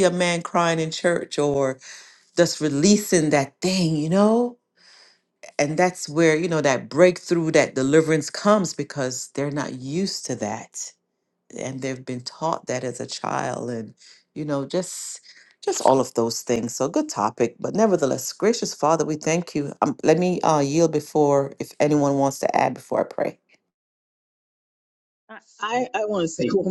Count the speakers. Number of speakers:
two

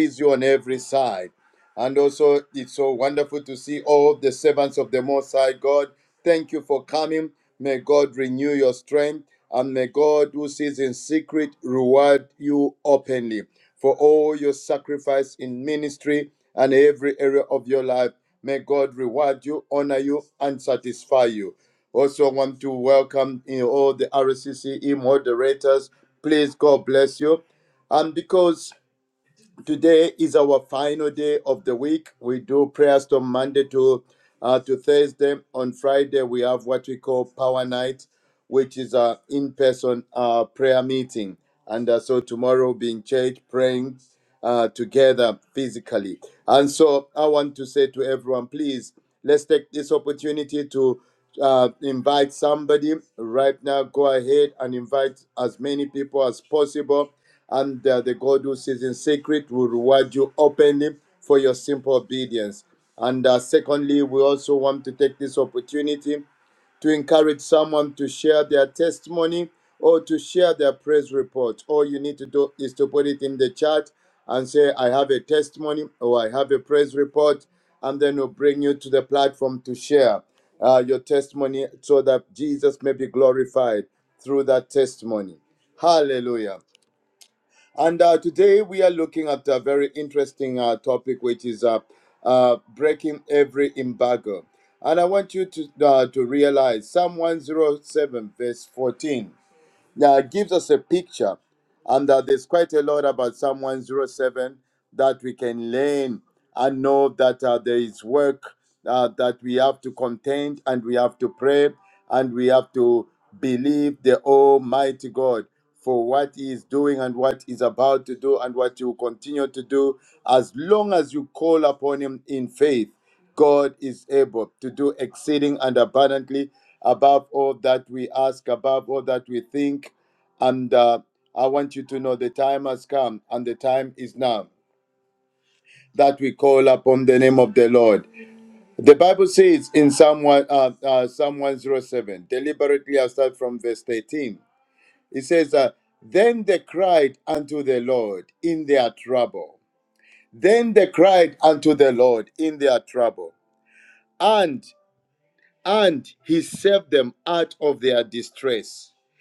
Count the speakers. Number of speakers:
one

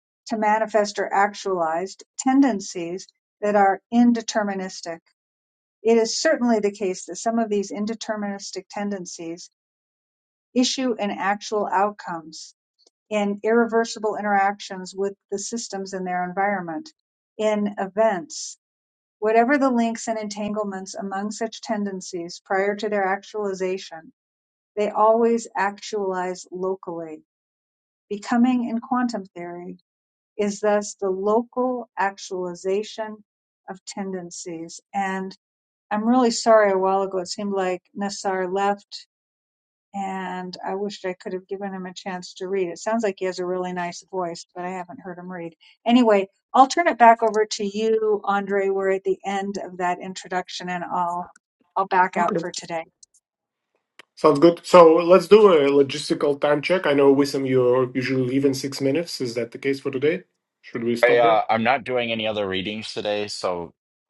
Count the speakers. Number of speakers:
three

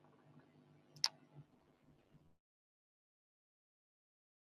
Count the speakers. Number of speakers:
zero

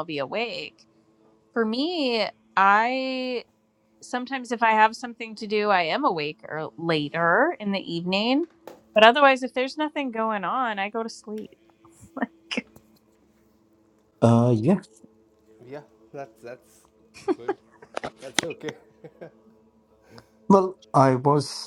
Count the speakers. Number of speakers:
three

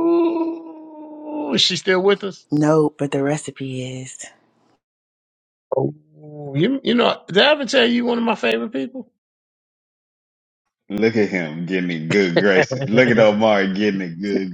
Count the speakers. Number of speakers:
three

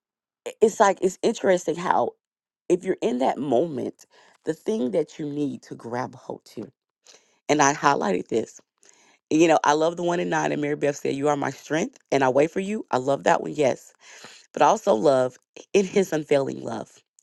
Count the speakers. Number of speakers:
one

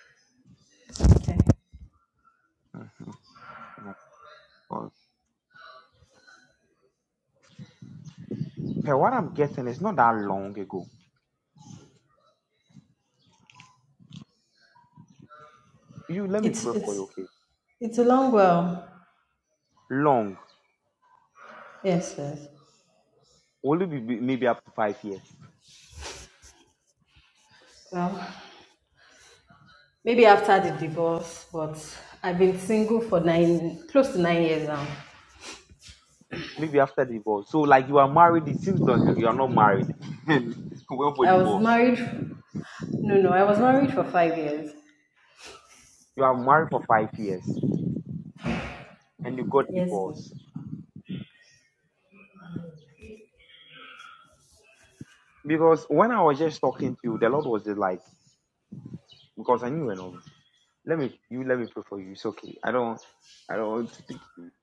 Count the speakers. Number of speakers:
two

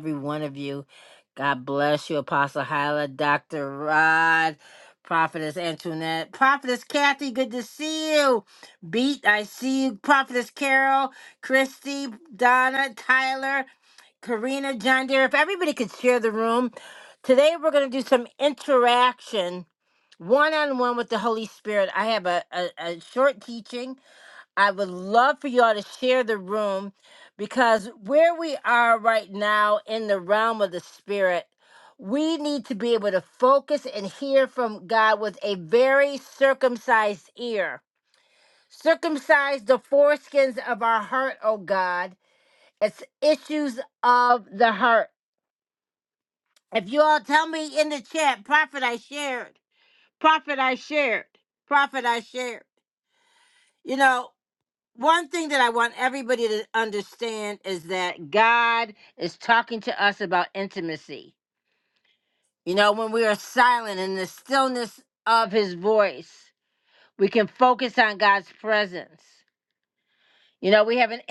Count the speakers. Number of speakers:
one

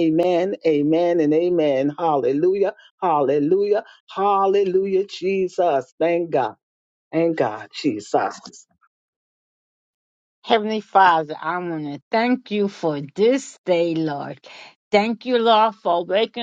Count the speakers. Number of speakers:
two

